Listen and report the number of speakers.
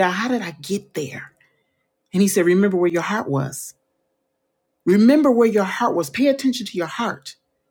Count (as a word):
one